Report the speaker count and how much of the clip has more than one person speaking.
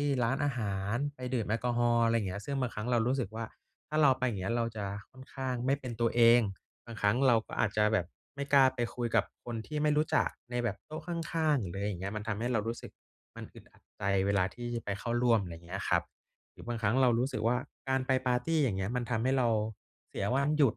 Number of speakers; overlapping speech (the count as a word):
one, no overlap